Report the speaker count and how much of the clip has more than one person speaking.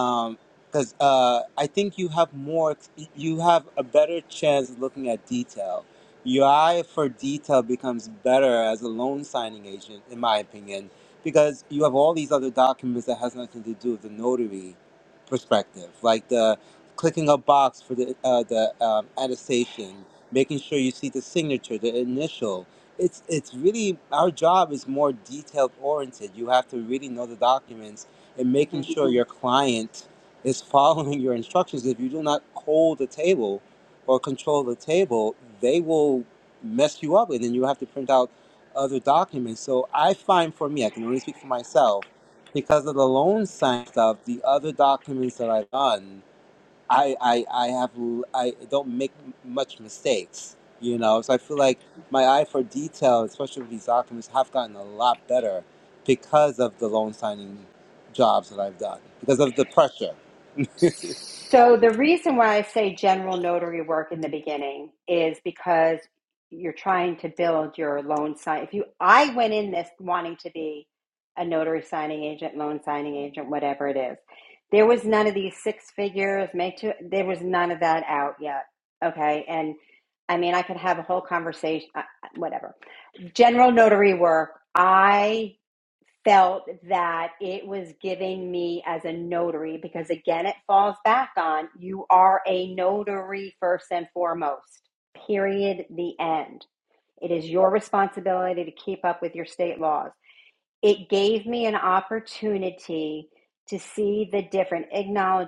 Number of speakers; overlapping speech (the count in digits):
2, under 1%